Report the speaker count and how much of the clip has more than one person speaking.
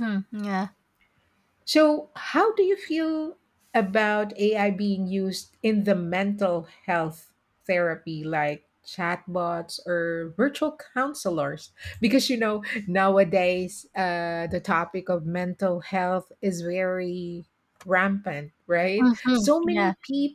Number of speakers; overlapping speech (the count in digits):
2, about 5%